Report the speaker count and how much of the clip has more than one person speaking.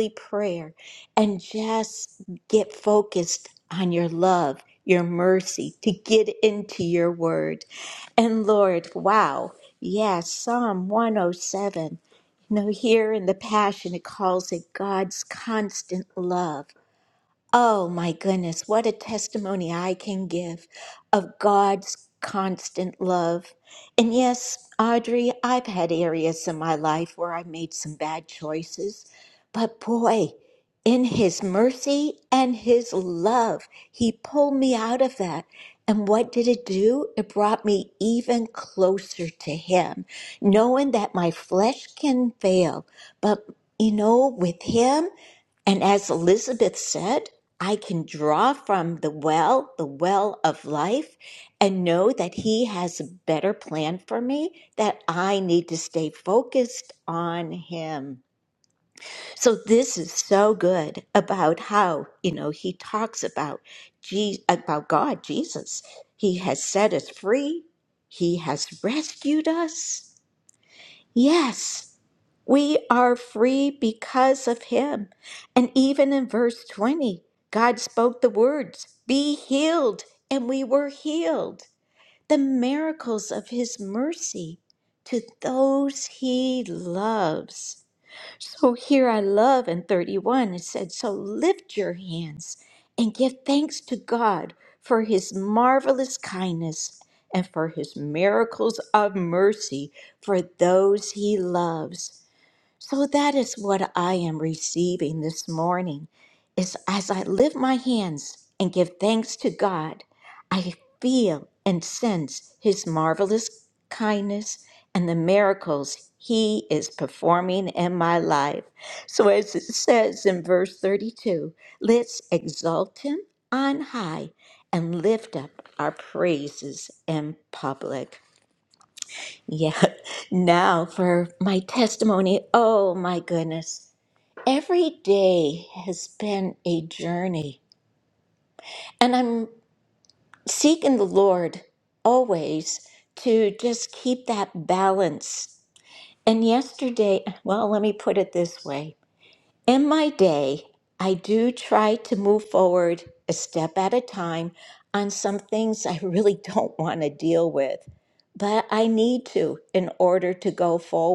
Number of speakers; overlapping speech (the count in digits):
1, no overlap